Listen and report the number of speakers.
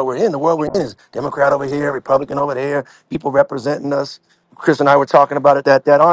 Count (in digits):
1